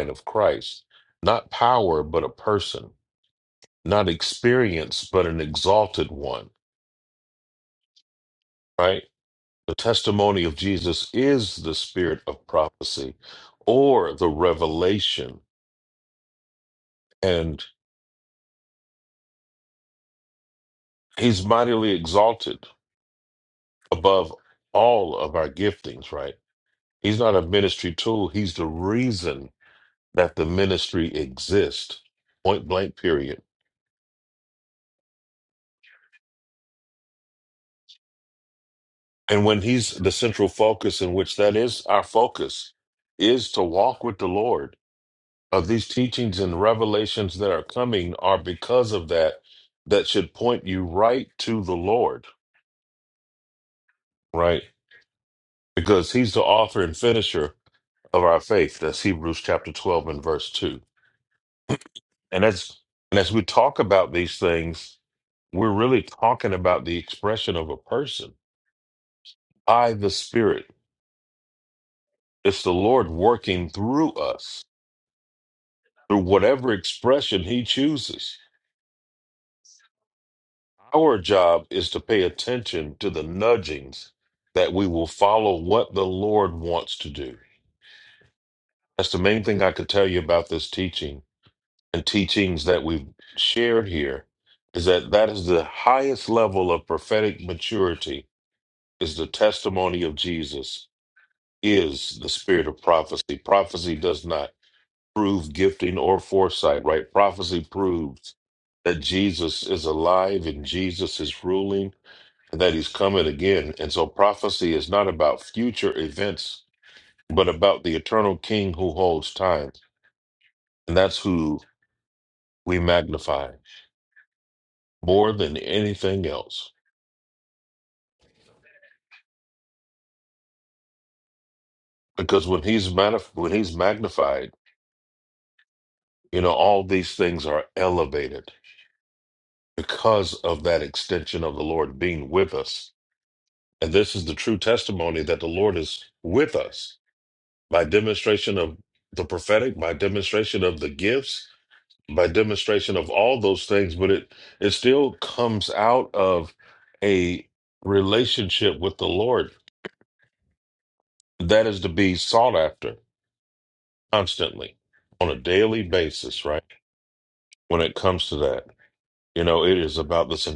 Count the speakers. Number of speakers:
1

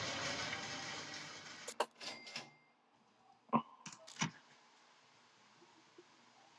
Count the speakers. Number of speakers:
0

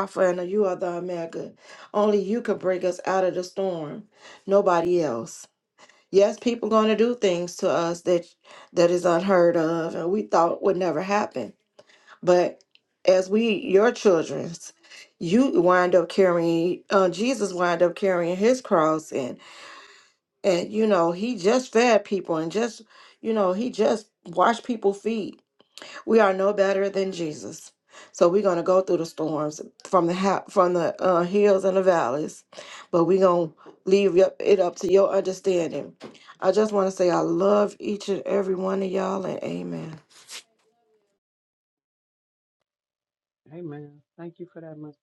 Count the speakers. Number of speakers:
2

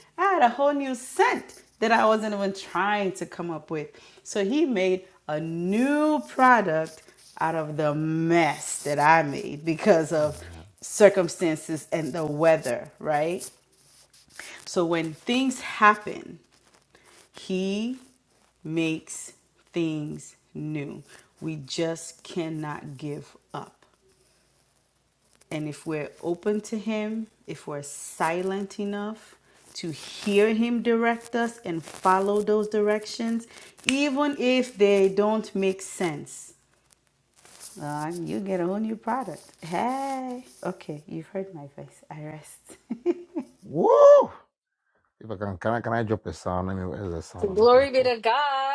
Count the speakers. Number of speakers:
3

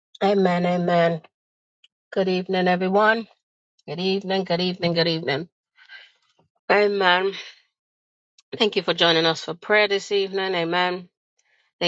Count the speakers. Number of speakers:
1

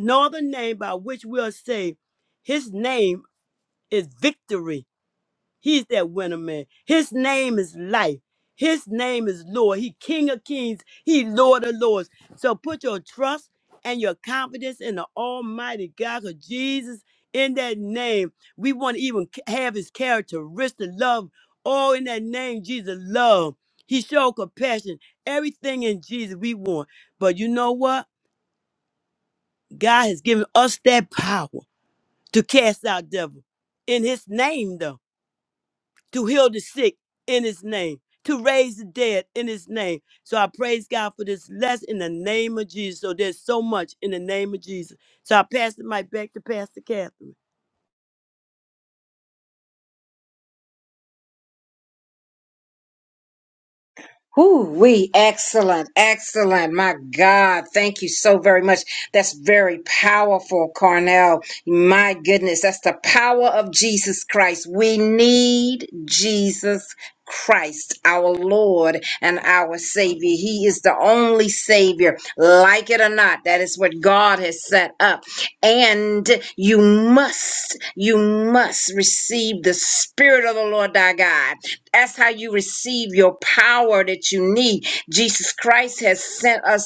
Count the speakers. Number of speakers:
2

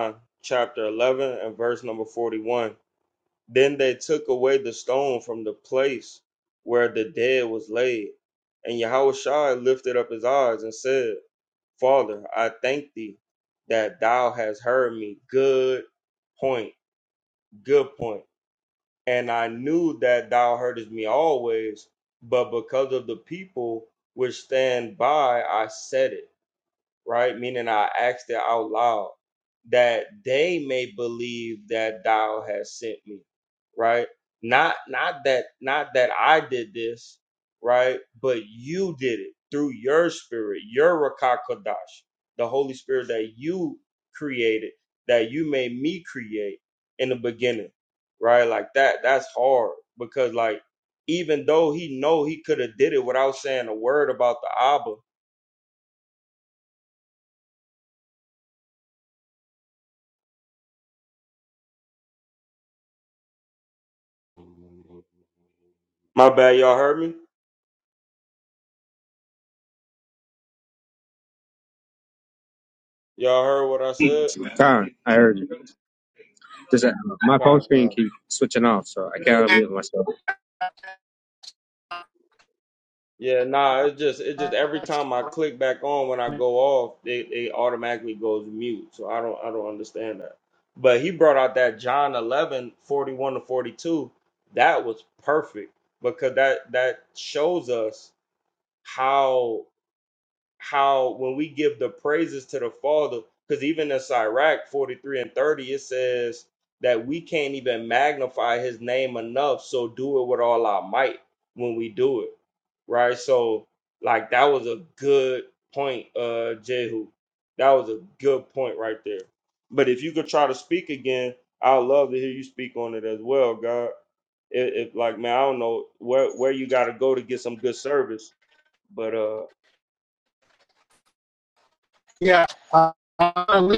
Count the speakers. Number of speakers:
3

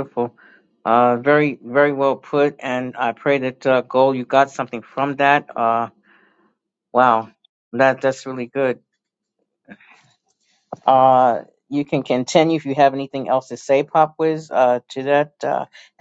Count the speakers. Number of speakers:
1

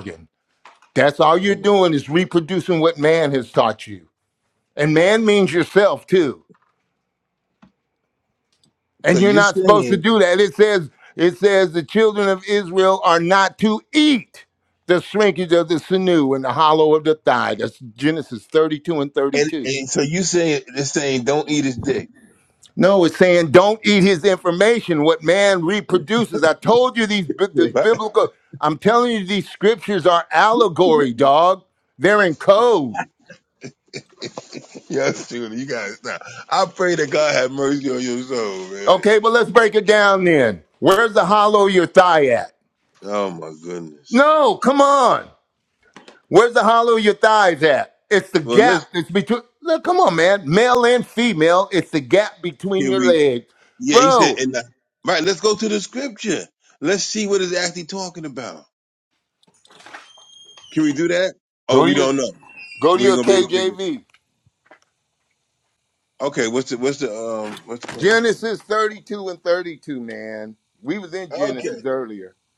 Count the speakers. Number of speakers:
2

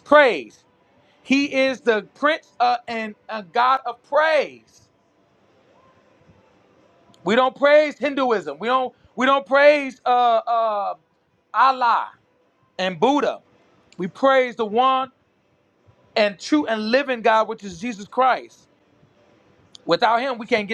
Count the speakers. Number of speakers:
1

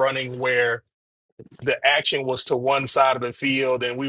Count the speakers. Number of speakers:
1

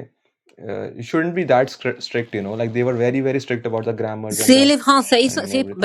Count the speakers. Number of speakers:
2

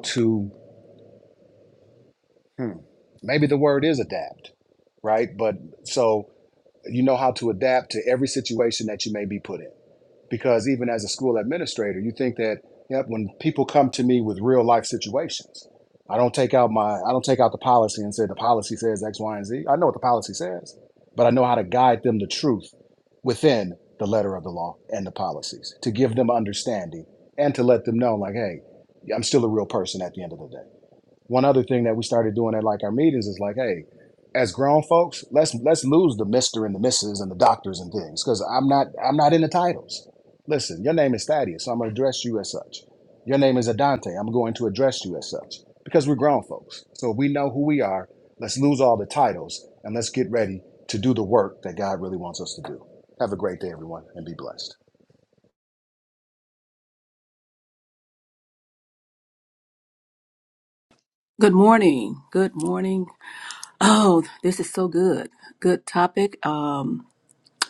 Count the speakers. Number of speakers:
2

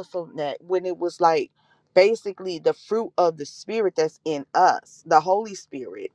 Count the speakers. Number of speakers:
1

